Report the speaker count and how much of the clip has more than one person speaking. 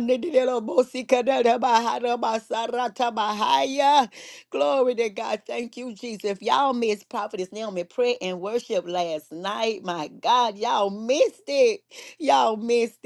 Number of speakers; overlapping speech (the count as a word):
one, no overlap